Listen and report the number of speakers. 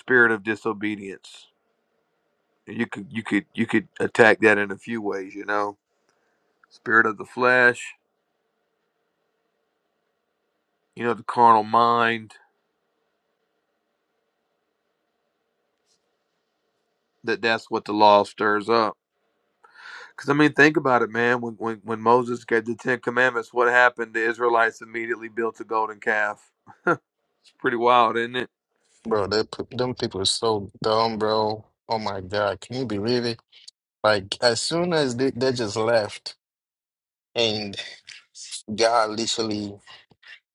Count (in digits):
2